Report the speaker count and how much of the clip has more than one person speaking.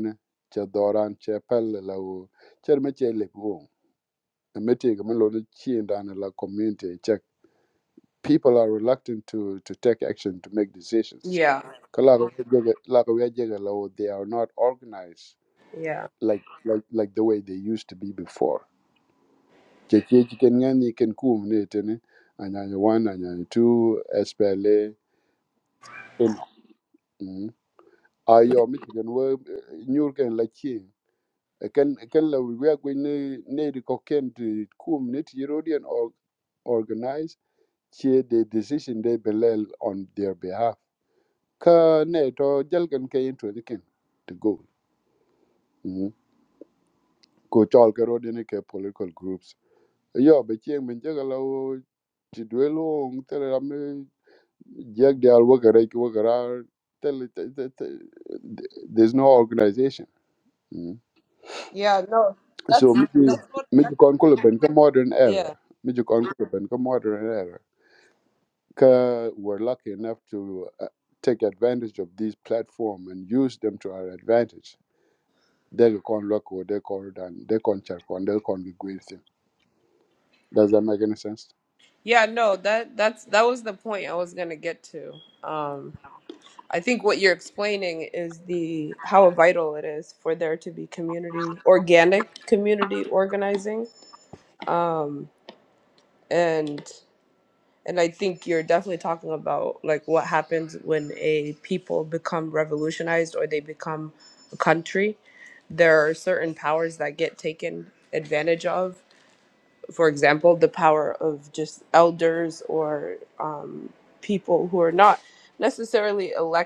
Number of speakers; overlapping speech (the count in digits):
2, about 1%